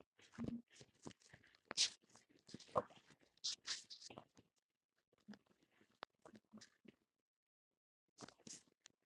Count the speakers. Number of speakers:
zero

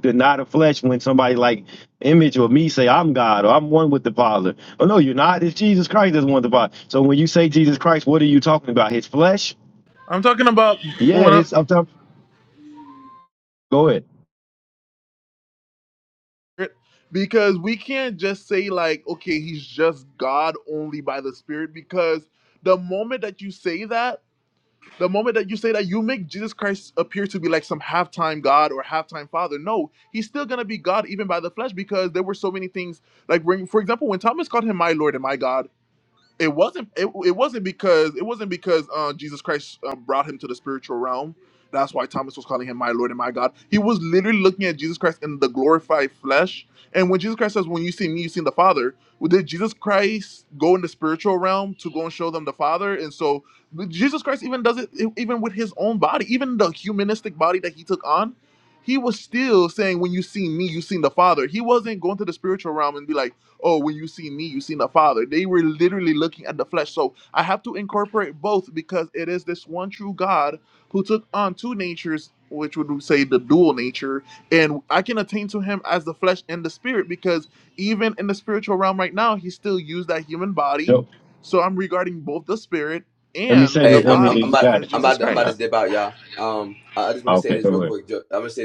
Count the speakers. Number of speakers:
three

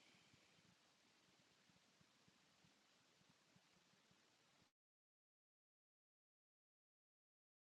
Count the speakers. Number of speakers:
zero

